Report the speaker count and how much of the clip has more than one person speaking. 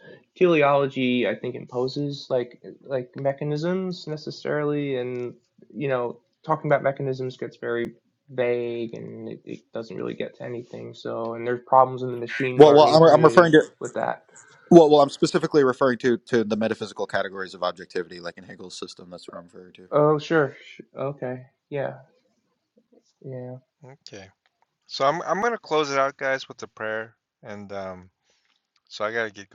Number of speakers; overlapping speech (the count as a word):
three, about 3%